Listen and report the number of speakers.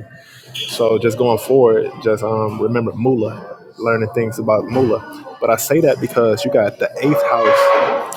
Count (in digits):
1